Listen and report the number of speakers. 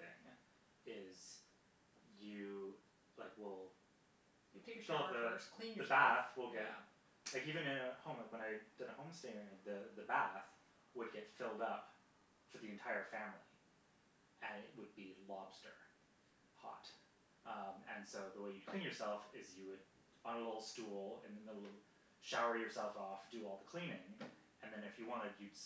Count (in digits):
2